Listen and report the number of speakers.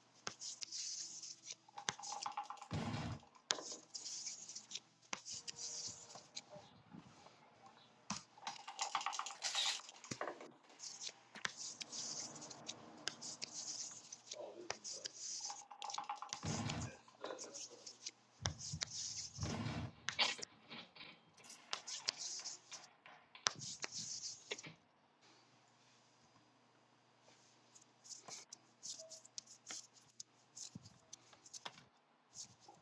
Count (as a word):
zero